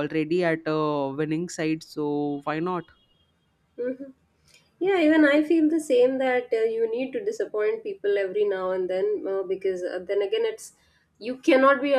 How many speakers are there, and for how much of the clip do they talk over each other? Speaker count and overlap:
2, no overlap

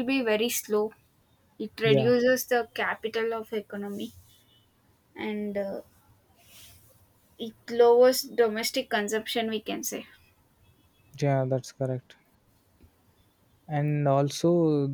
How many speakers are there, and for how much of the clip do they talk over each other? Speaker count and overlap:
2, about 2%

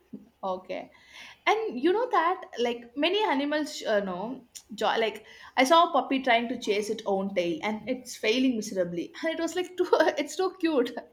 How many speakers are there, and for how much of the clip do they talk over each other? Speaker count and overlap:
1, no overlap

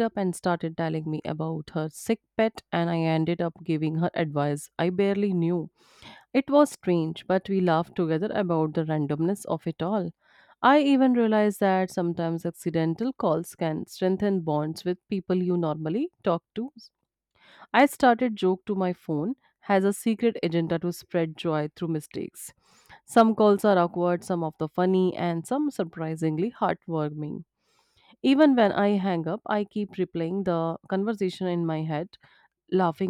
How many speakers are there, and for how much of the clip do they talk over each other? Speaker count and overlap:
1, no overlap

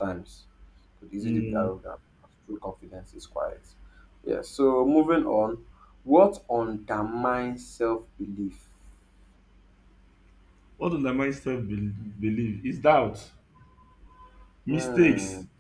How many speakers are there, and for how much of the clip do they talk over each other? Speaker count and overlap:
2, about 8%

